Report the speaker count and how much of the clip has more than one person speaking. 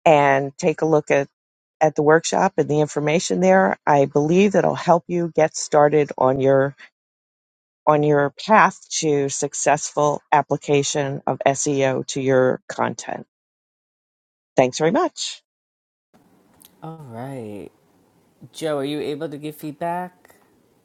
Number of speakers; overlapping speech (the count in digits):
2, no overlap